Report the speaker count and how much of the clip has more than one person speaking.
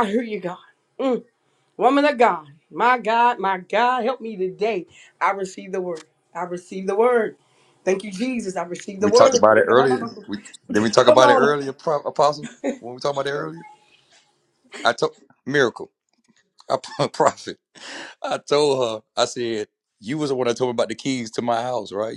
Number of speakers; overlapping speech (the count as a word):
two, about 4%